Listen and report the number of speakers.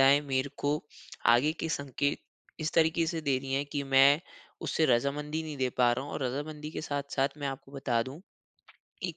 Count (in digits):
1